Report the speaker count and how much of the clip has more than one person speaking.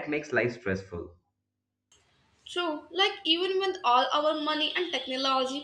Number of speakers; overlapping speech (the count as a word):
two, no overlap